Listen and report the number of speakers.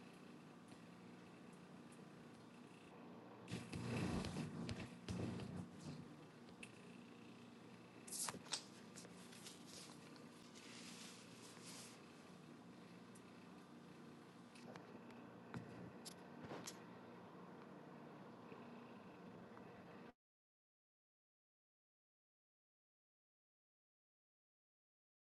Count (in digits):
0